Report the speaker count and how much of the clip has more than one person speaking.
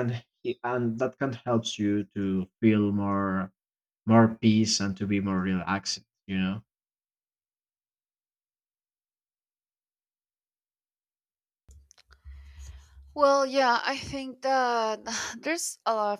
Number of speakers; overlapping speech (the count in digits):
2, no overlap